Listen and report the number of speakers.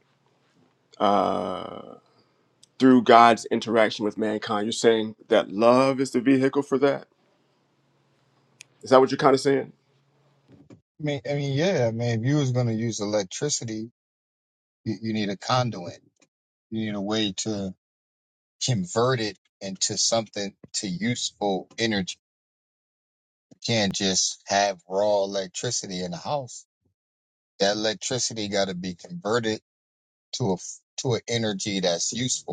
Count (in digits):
2